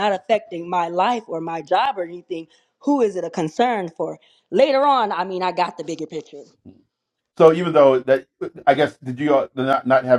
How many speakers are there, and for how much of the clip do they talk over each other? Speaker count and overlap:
two, no overlap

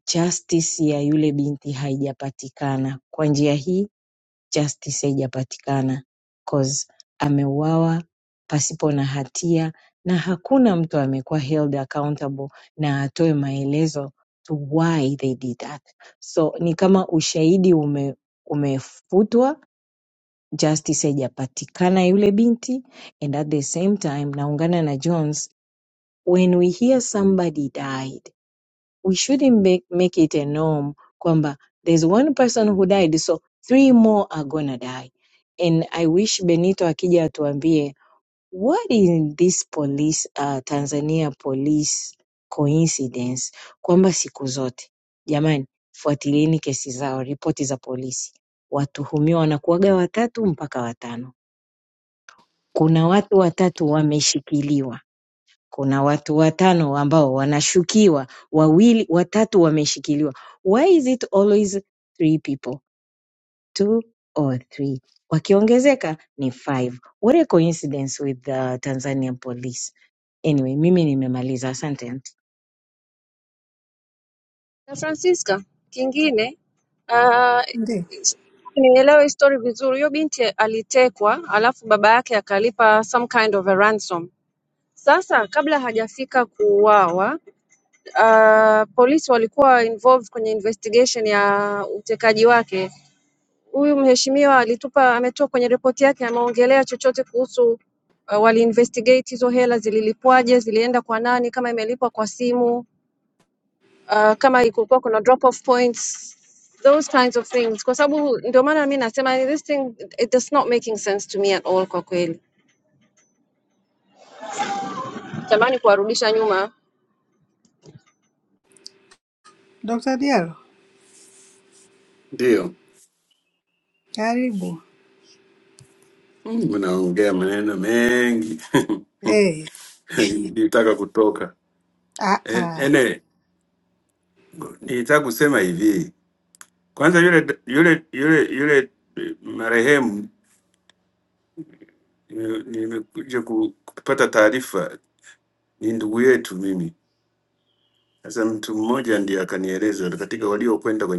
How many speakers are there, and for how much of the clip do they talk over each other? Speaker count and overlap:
four, under 1%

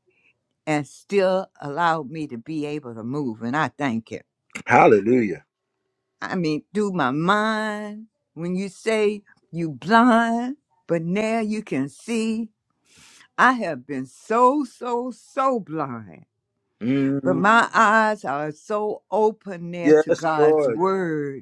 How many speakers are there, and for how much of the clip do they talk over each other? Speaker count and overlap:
two, about 5%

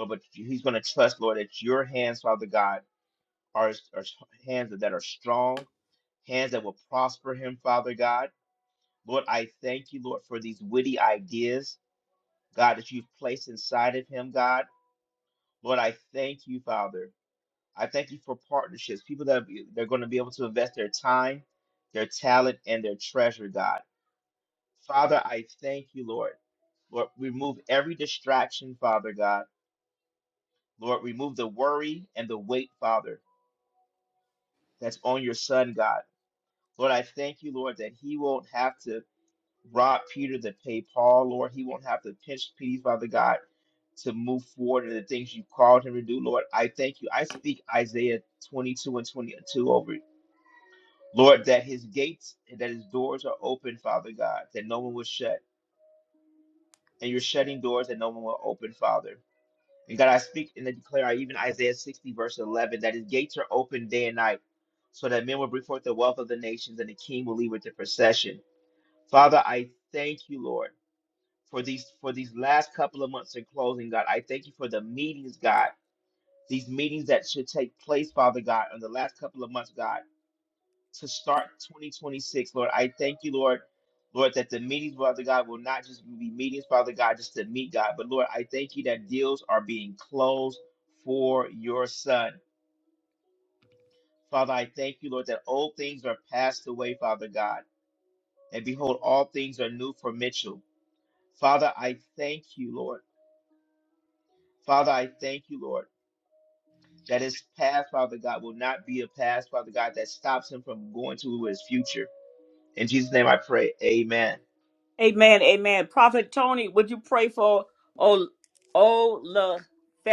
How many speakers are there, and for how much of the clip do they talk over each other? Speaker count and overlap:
two, no overlap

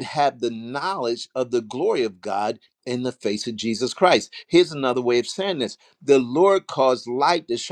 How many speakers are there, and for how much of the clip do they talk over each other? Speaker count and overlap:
one, no overlap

